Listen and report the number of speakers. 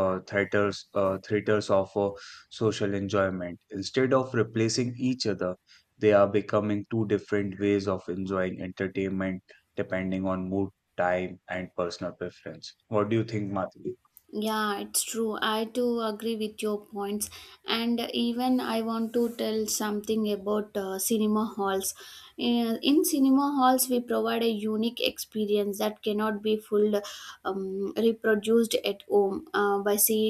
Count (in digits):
2